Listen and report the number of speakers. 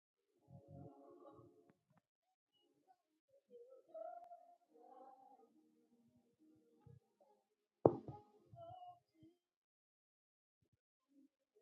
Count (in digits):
0